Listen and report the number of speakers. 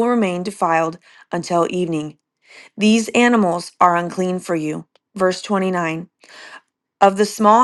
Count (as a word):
one